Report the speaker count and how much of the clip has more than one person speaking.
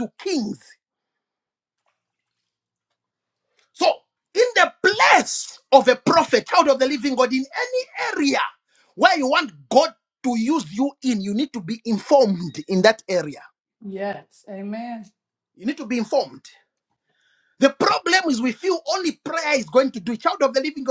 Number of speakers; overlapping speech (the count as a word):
two, no overlap